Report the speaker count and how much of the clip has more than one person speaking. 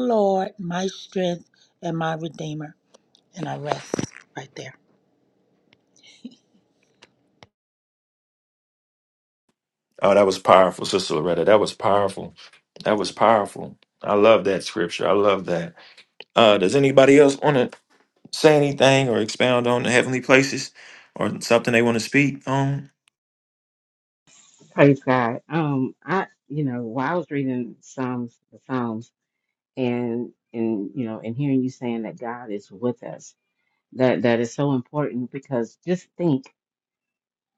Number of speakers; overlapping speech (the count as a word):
three, no overlap